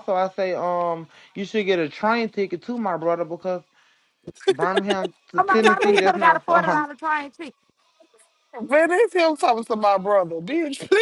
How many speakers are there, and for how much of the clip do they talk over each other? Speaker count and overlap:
three, about 13%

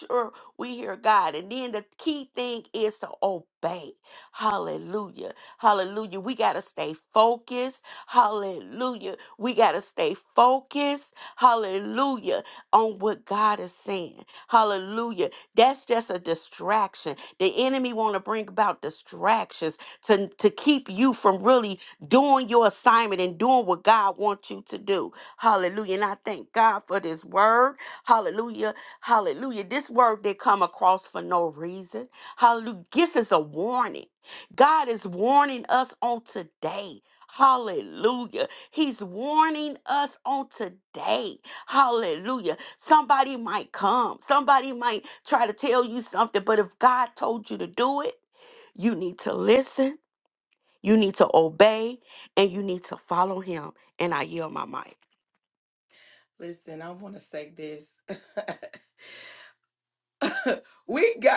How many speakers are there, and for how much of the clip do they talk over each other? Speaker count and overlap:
two, no overlap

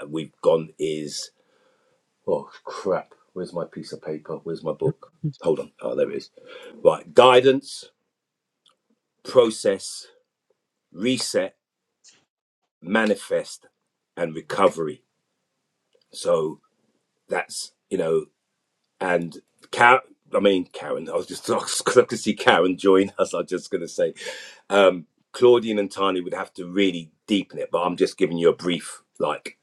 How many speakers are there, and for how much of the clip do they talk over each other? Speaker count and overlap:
one, no overlap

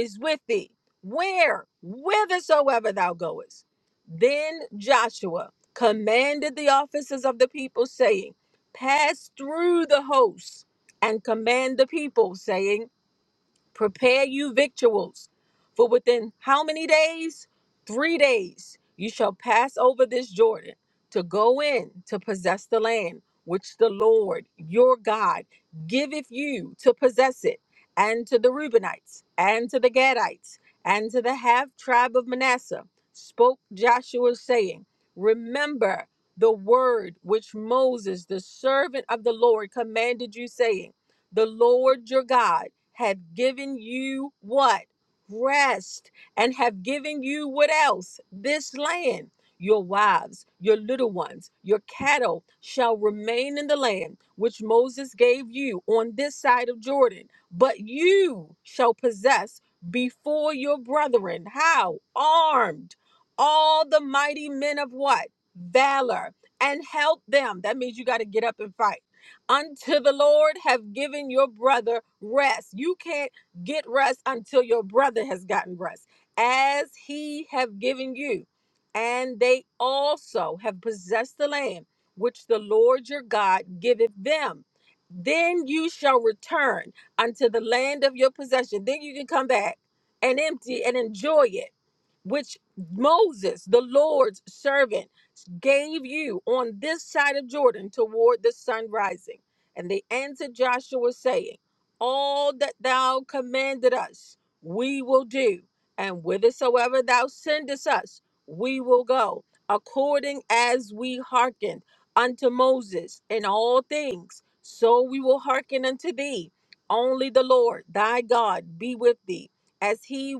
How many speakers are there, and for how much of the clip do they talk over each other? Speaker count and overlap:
one, no overlap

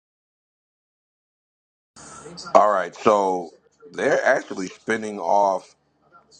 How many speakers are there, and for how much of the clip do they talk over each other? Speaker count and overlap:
one, no overlap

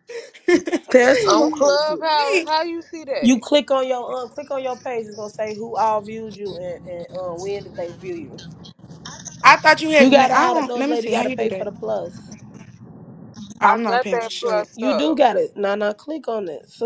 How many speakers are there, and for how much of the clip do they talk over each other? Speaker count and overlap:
three, about 26%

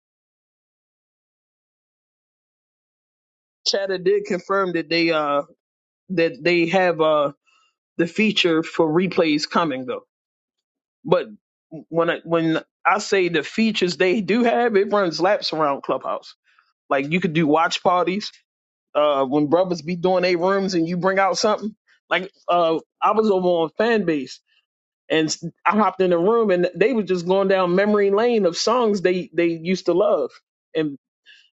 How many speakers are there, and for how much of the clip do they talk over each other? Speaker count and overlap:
one, no overlap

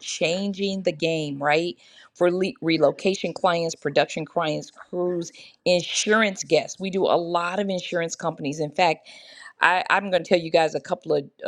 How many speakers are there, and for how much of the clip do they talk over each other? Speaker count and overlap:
one, no overlap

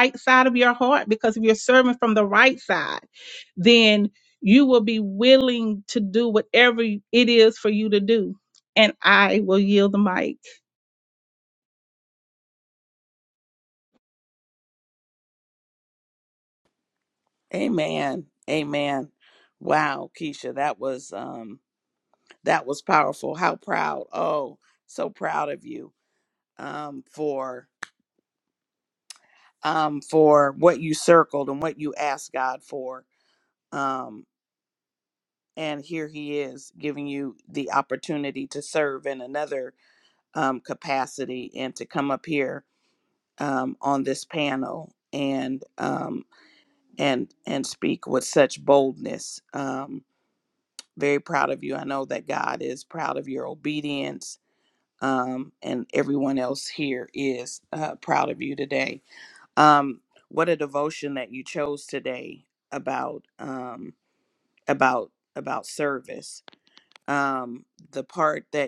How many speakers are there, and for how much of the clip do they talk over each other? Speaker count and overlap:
two, no overlap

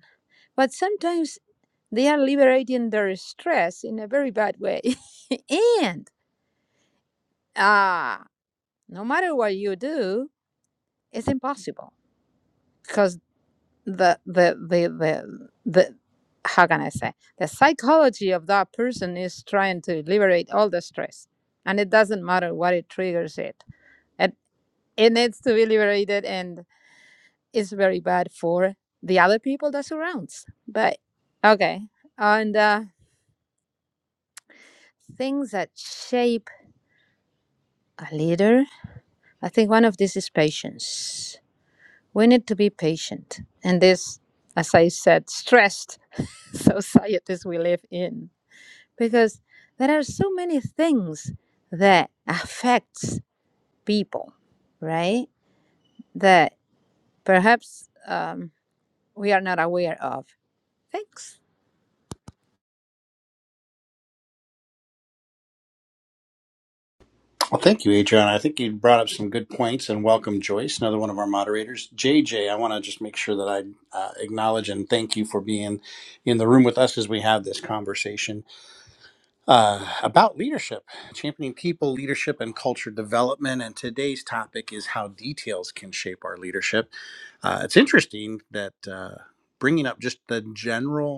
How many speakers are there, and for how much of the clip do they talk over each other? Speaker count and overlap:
two, no overlap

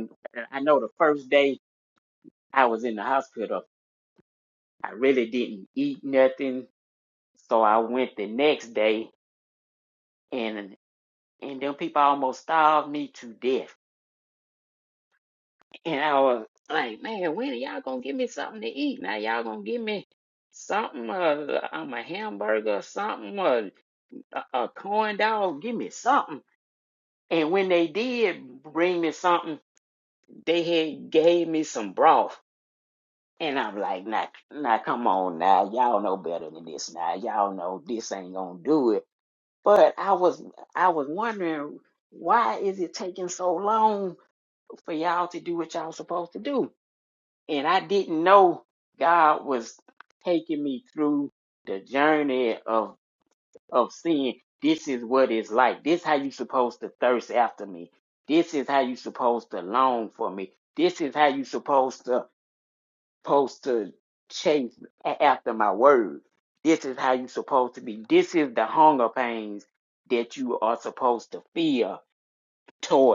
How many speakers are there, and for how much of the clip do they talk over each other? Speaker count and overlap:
one, no overlap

